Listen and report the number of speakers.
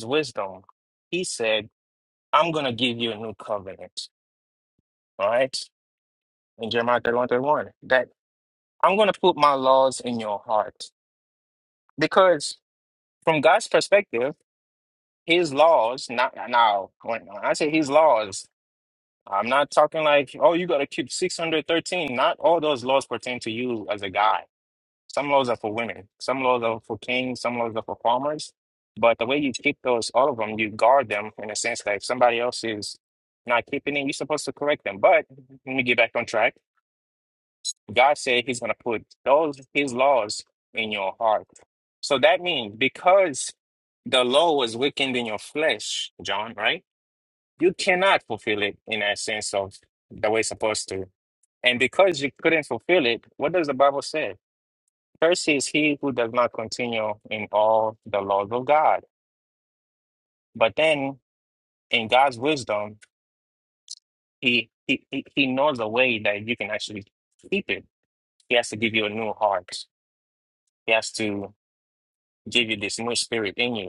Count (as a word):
one